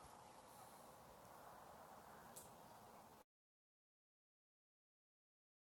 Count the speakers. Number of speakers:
zero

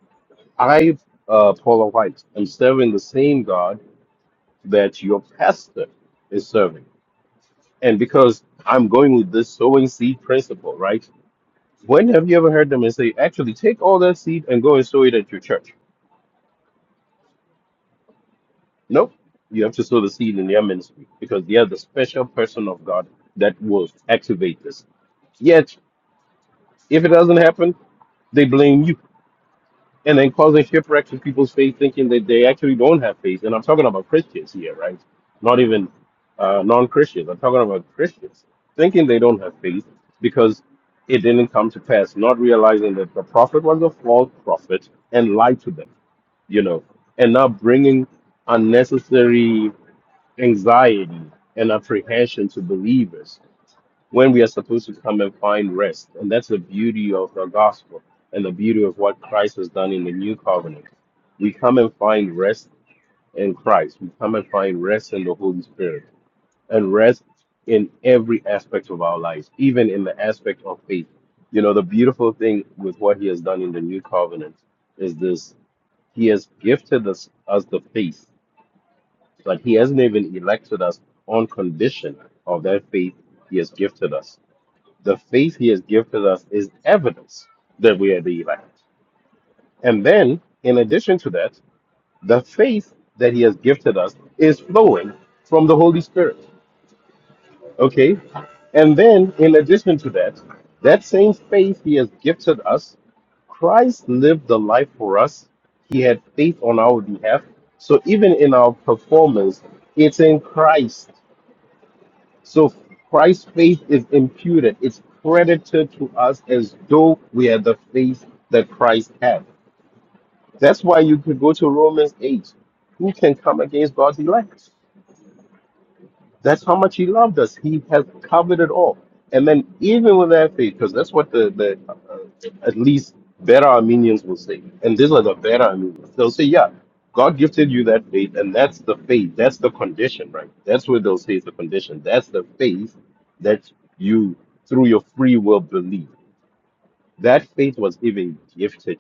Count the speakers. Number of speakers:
one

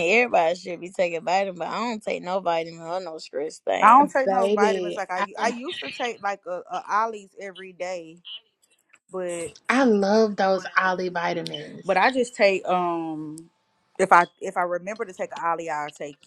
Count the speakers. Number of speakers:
three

